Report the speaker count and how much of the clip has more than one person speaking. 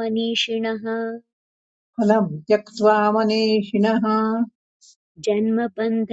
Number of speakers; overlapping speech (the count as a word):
two, no overlap